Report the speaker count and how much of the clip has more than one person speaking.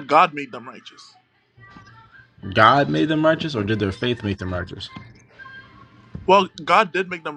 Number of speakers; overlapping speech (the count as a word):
two, no overlap